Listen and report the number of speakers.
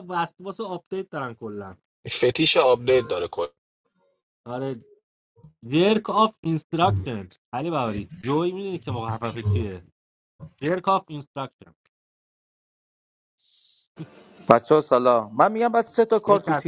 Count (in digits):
3